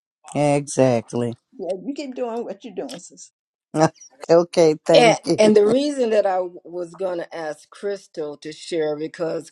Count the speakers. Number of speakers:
3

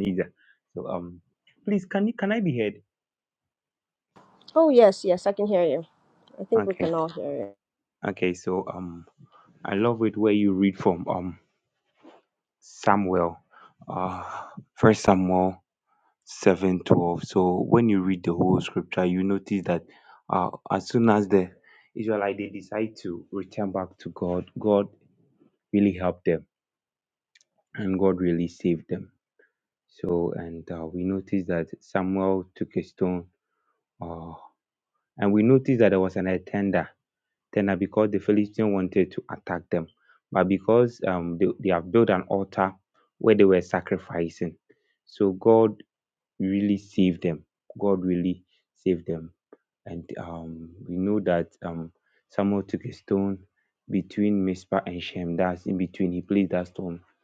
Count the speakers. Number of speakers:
2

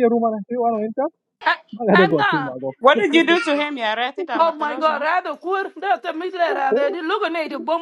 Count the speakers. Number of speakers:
3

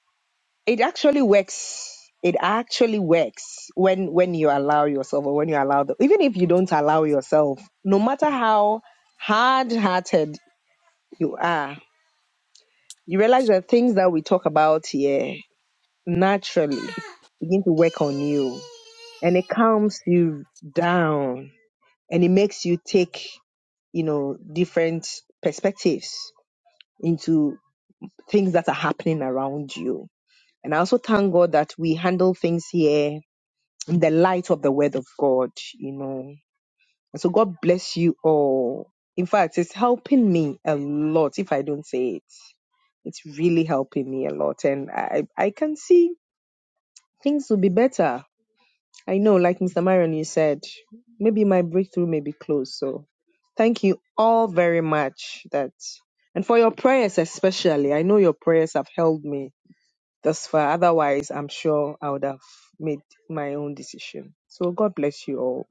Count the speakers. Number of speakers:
1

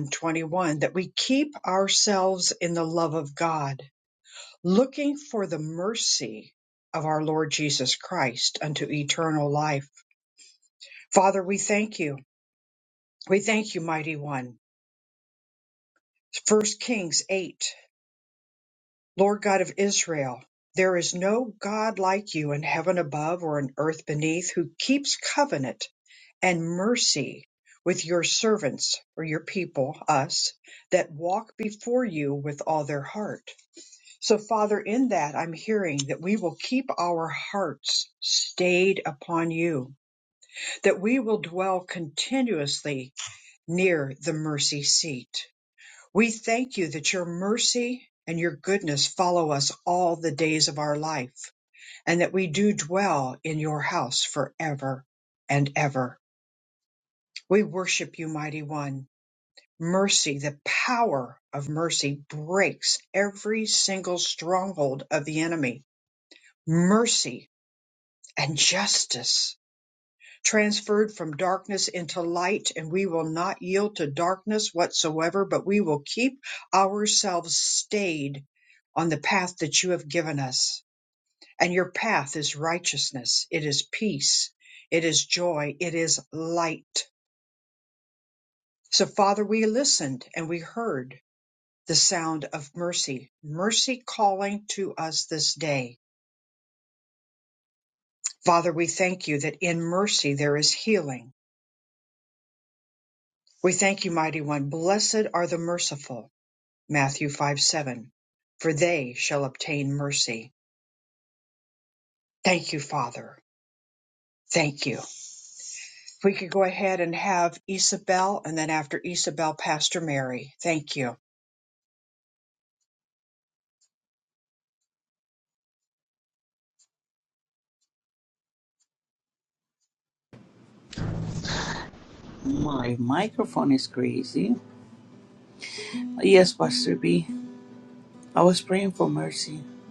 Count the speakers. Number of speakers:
2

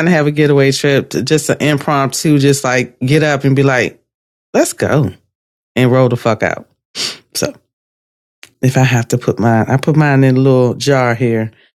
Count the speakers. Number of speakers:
1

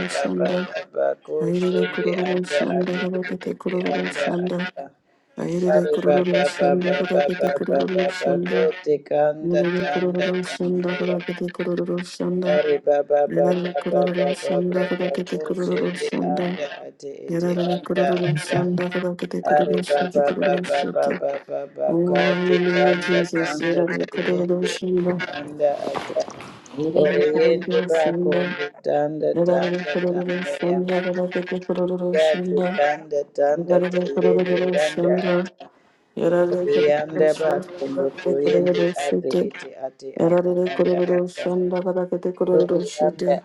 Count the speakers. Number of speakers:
2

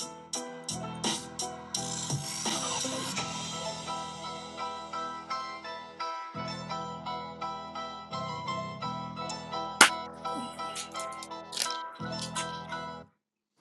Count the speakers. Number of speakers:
0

